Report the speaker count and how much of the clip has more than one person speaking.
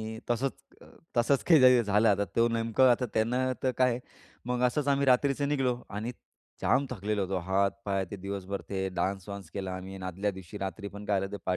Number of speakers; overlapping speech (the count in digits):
1, no overlap